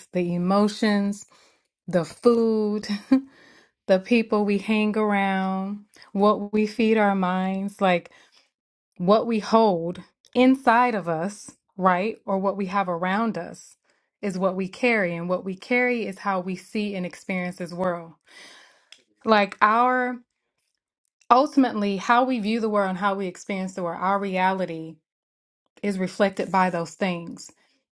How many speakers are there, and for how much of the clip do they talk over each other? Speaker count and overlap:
1, no overlap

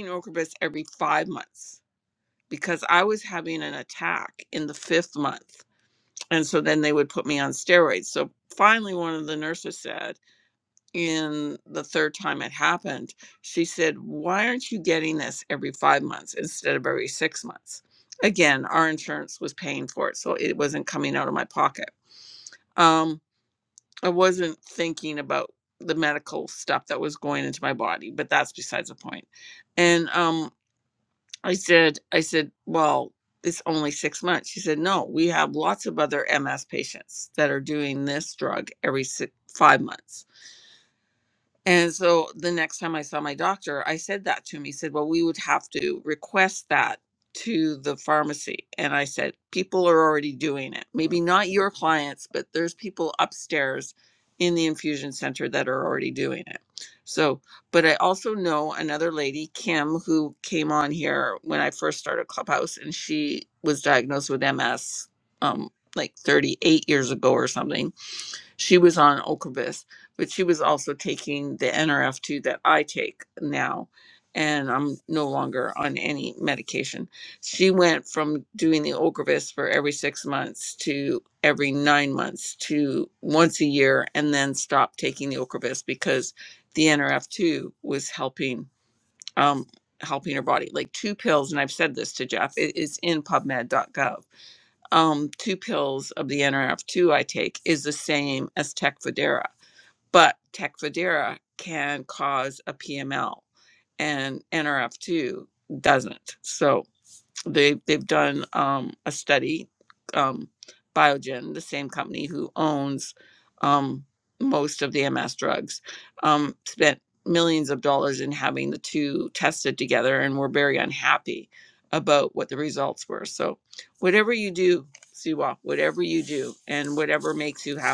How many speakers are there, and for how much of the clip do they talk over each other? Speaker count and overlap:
1, no overlap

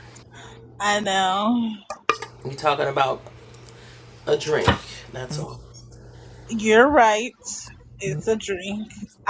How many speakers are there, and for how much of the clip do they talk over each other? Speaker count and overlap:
2, no overlap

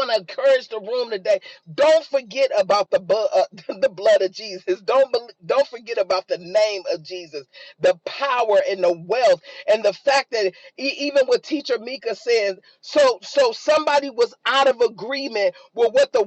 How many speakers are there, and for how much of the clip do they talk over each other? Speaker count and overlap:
1, no overlap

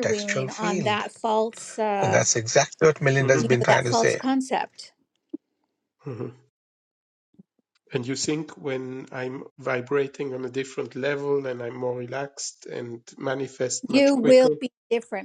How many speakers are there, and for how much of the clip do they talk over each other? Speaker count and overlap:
3, about 20%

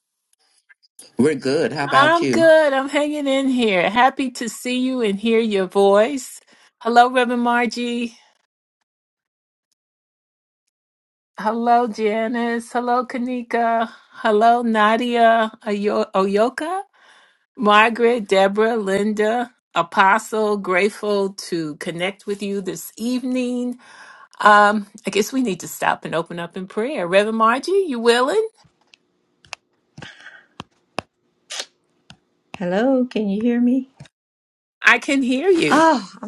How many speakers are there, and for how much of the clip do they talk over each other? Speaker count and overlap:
3, about 2%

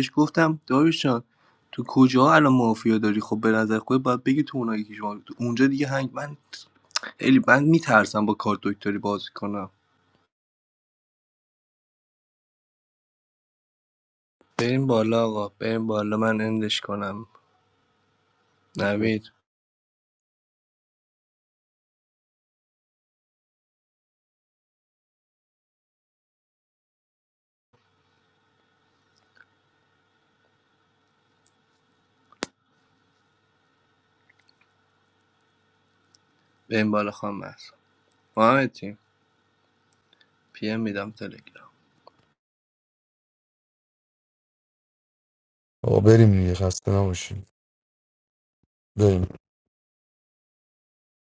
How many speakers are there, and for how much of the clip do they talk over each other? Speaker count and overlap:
2, no overlap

